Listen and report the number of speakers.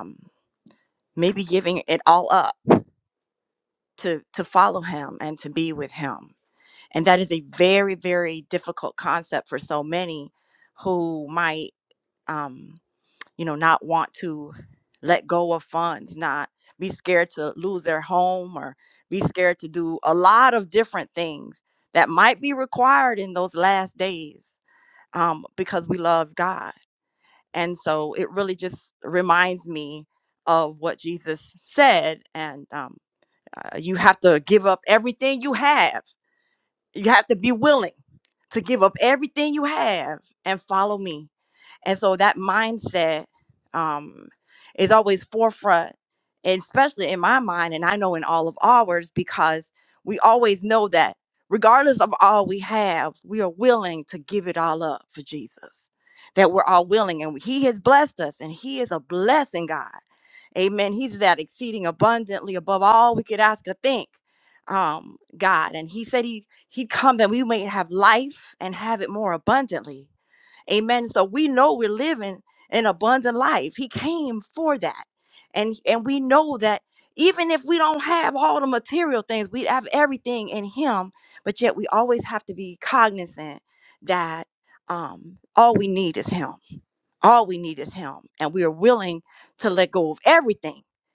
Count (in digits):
1